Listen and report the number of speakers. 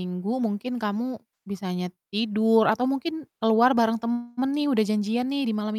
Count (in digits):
1